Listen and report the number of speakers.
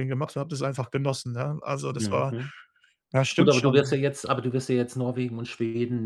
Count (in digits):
2